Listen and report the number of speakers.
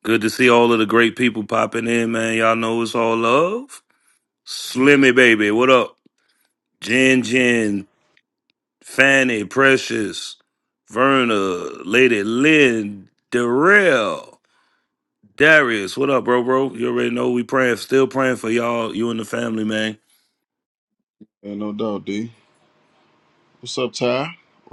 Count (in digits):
2